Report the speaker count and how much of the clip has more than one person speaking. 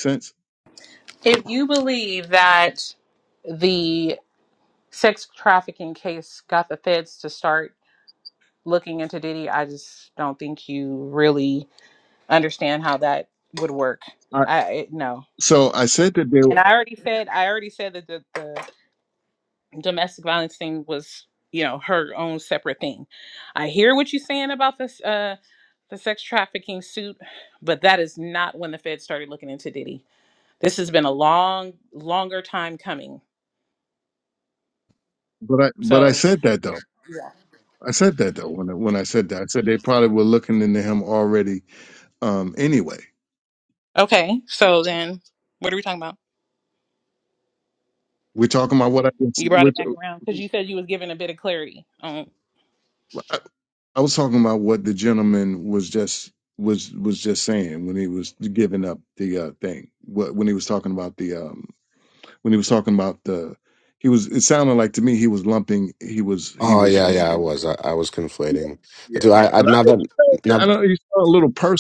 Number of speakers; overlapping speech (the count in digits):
3, about 4%